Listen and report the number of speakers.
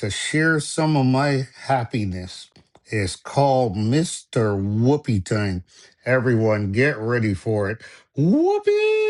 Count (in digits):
1